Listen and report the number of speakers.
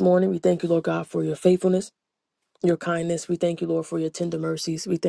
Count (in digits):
1